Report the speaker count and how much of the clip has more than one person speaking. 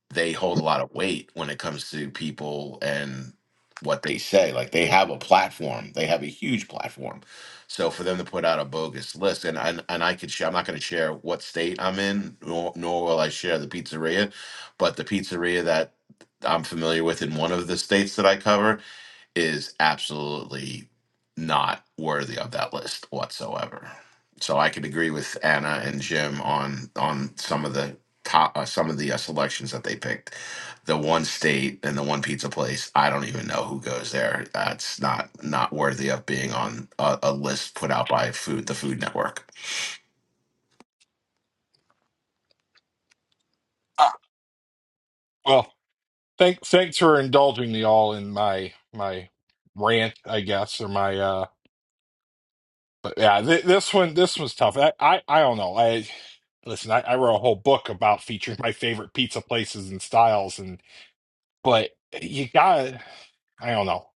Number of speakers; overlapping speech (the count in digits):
2, no overlap